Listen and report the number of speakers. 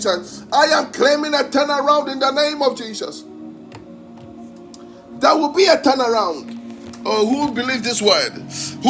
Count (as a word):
one